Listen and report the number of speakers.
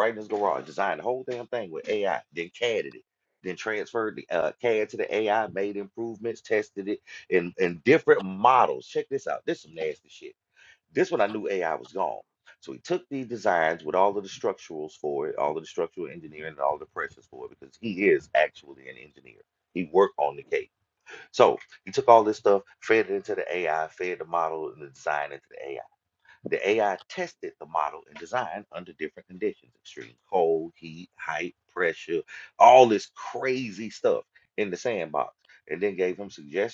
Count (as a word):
one